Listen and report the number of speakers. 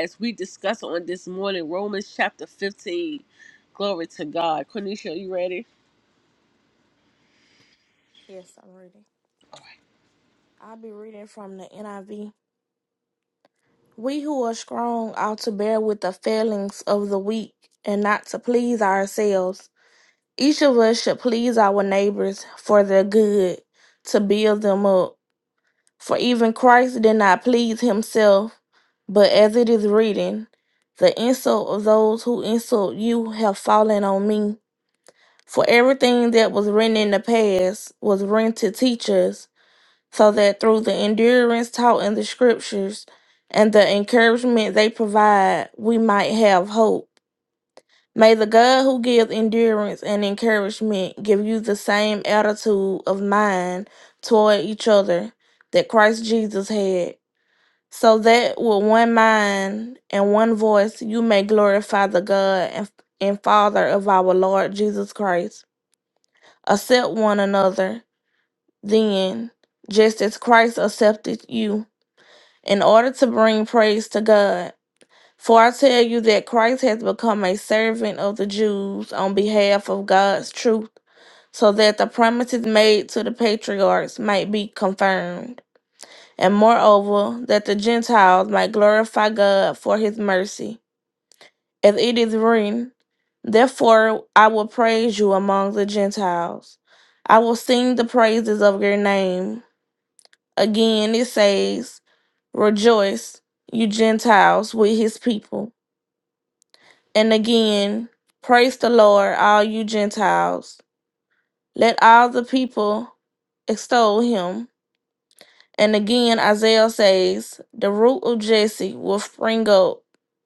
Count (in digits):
2